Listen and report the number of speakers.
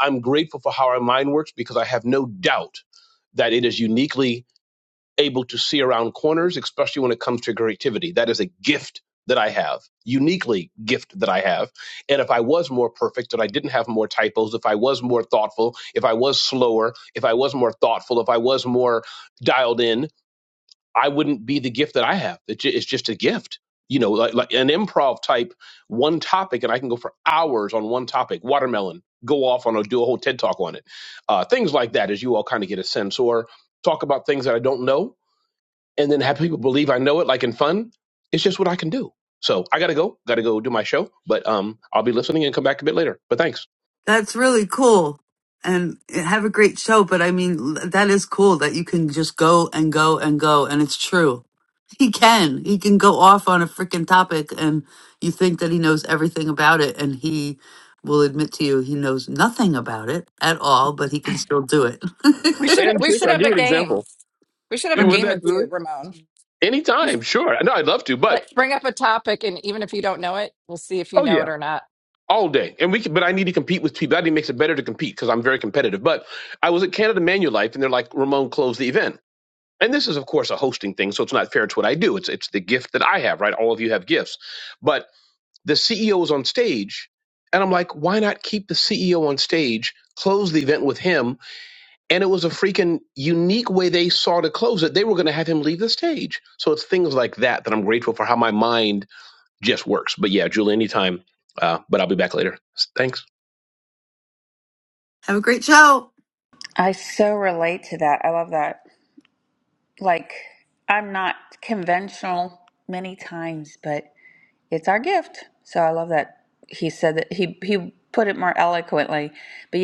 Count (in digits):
4